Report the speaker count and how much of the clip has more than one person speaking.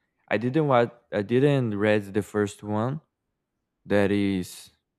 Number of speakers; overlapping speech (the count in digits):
1, no overlap